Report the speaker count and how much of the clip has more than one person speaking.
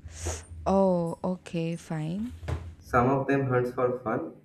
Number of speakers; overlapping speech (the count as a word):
two, no overlap